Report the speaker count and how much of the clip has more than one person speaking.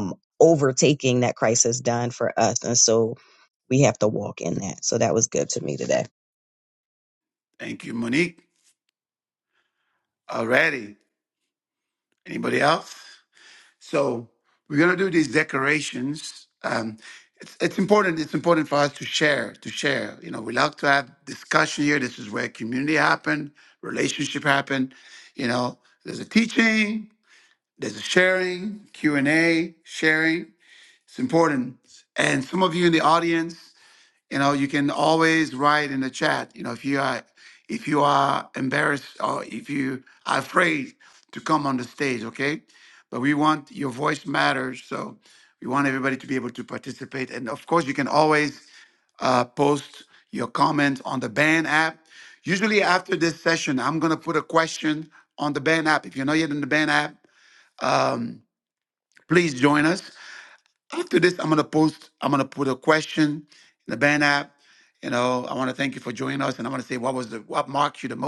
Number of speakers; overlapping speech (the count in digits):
2, no overlap